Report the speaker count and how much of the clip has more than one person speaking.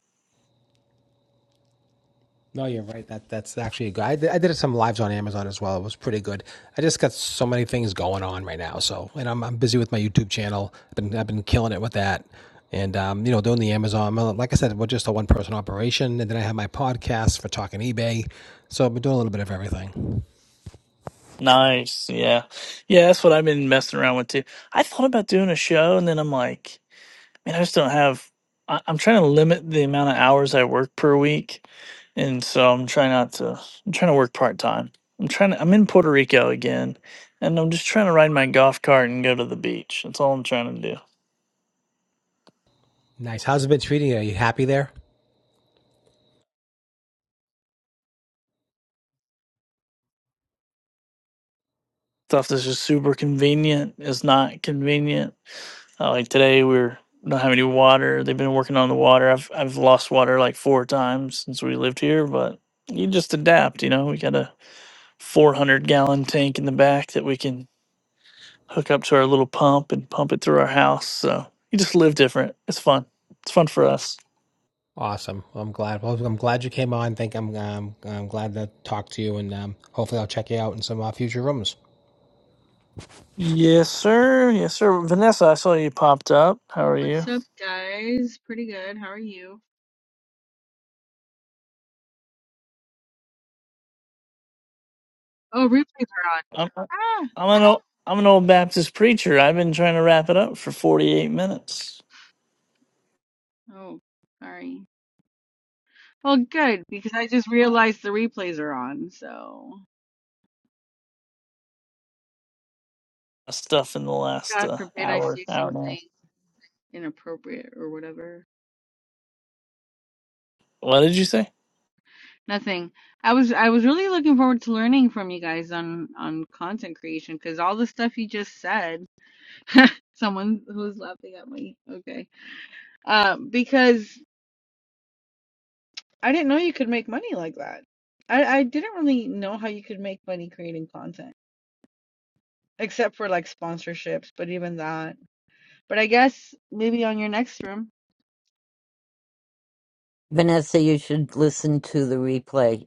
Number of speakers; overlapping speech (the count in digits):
4, about 1%